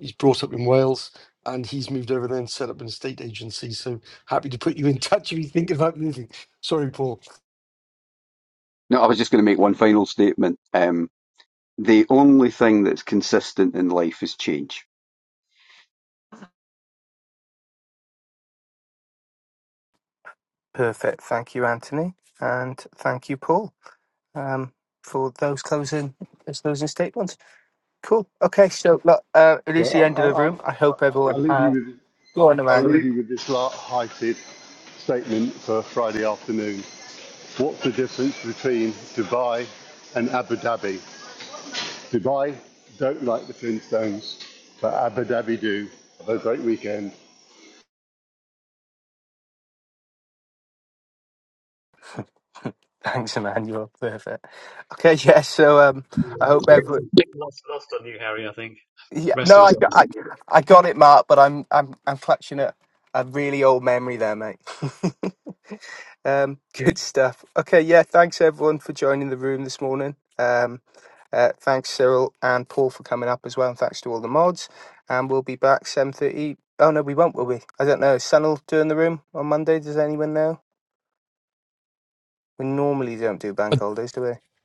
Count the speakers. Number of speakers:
5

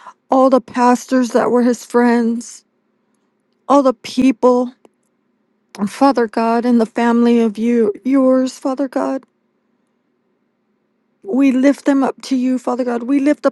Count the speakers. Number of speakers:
1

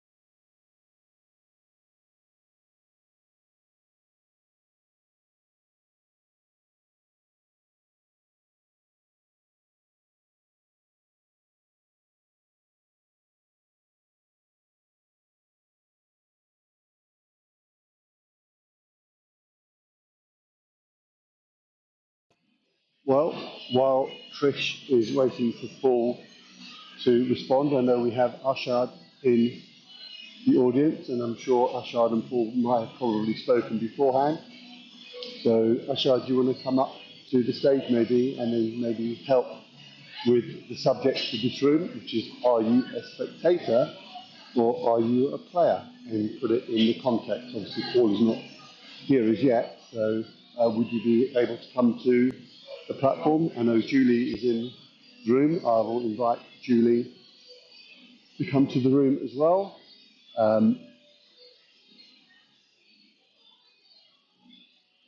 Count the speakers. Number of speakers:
1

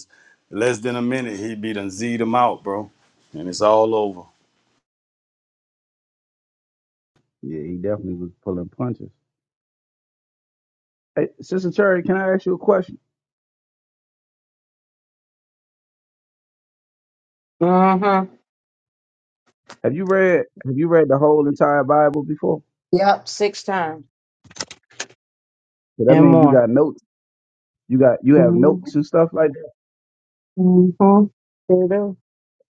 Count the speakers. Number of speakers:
3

